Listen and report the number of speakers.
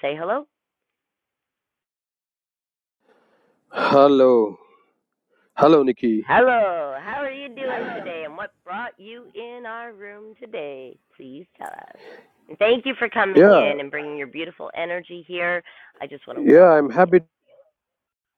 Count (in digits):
2